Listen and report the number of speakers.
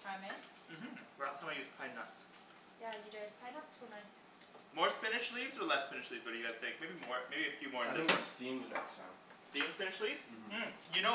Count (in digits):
3